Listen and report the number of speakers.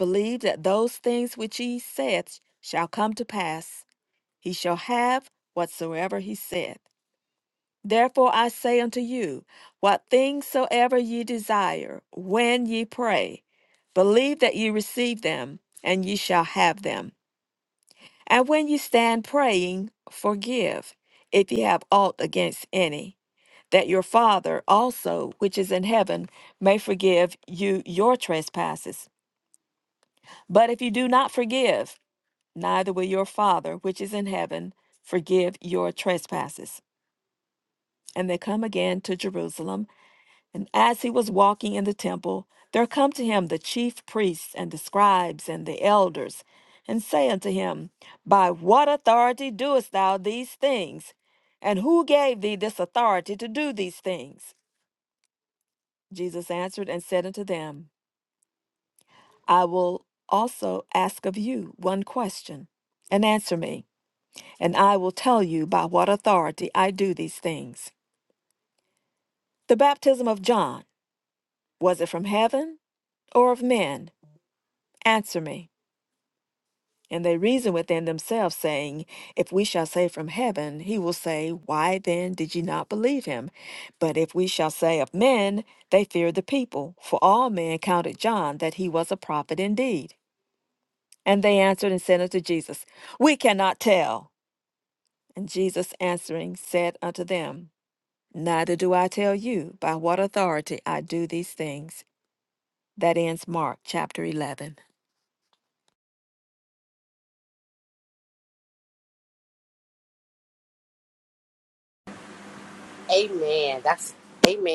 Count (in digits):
2